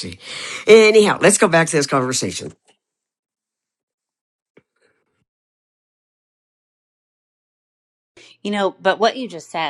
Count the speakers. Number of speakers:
2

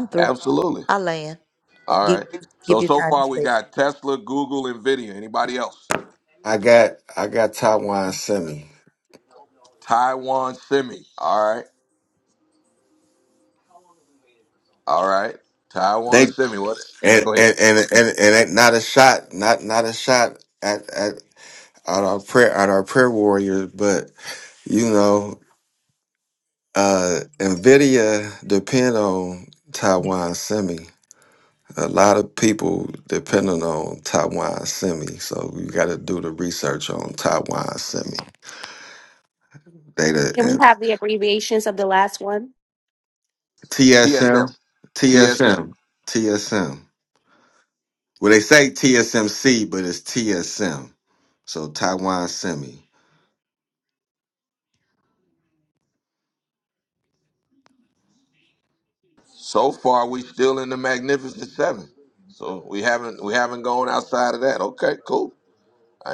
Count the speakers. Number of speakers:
4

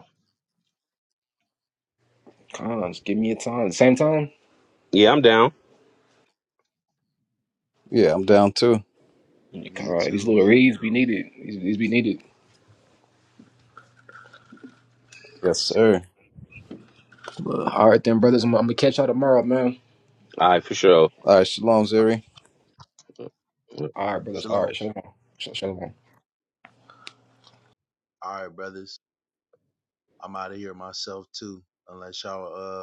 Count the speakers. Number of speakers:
4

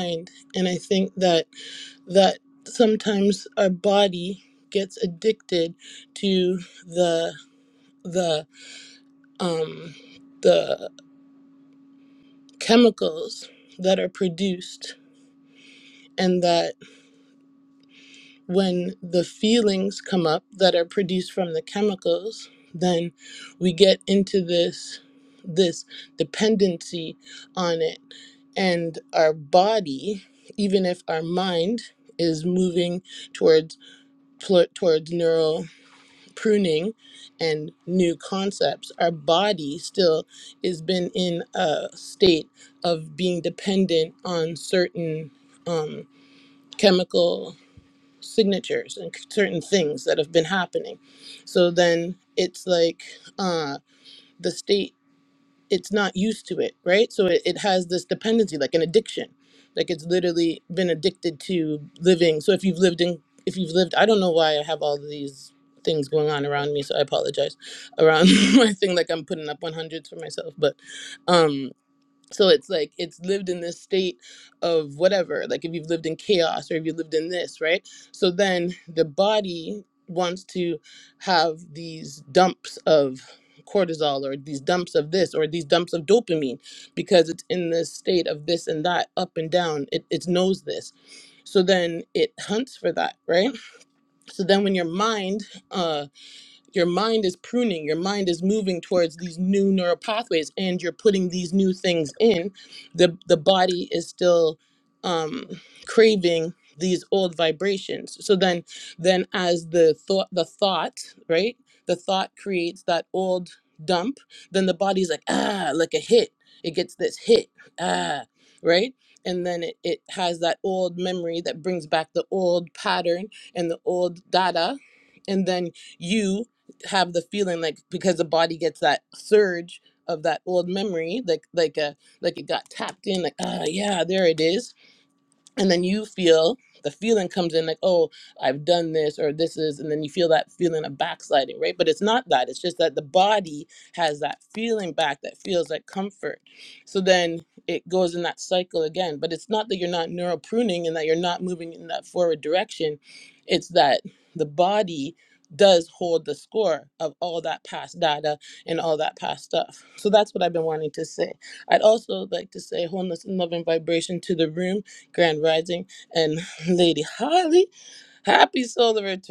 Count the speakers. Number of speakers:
1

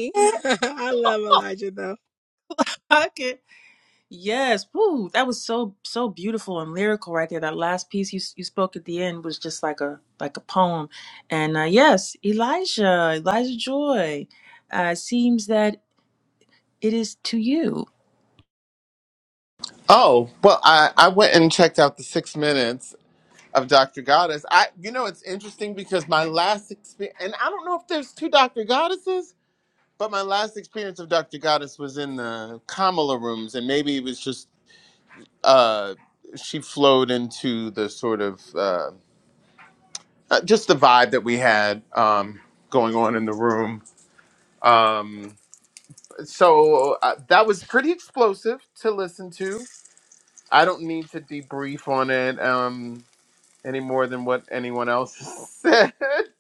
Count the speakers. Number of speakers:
3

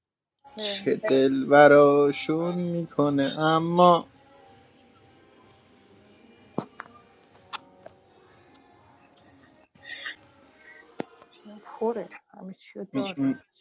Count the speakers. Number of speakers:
2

